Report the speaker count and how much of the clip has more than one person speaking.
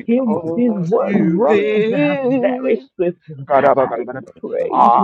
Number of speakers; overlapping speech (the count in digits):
2, about 52%